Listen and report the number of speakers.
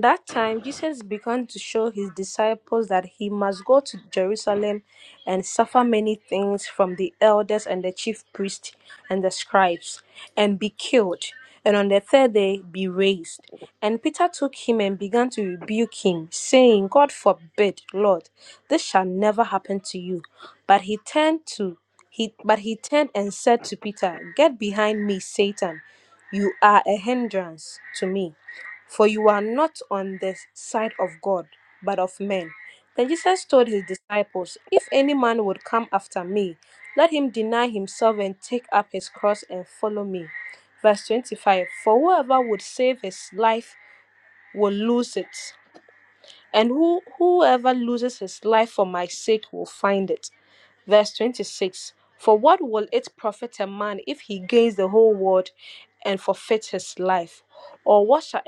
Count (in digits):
1